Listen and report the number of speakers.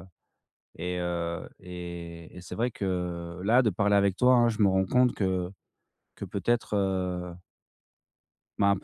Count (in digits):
1